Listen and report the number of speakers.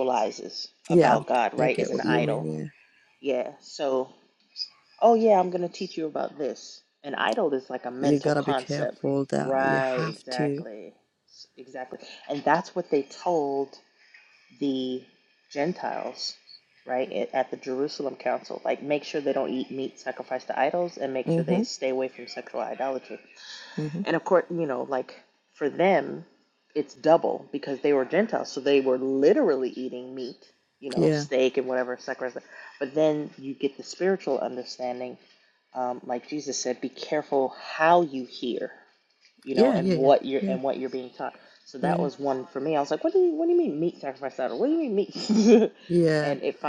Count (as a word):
two